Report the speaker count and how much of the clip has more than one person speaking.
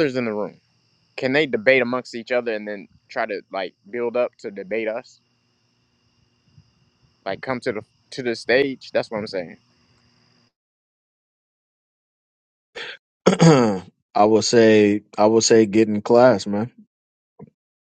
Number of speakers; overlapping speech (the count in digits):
2, no overlap